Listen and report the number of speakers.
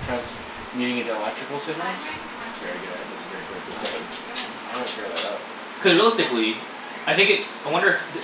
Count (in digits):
2